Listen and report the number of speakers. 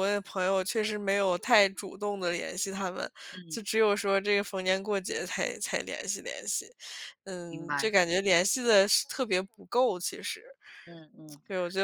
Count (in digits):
2